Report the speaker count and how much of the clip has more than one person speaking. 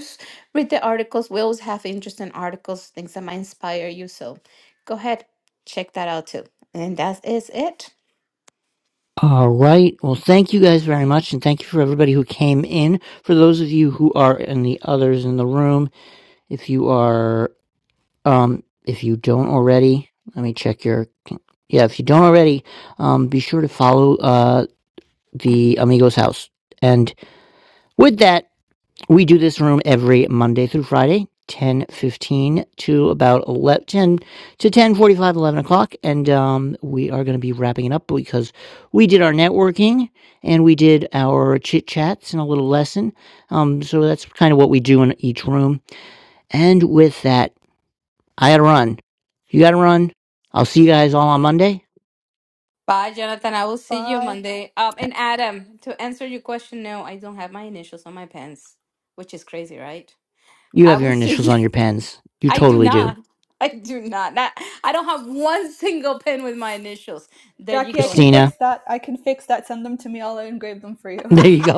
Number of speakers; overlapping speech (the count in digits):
3, about 4%